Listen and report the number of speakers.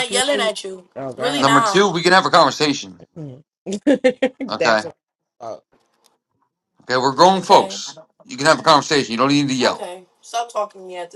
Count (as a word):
three